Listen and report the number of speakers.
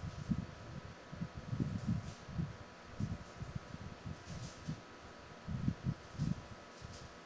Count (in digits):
0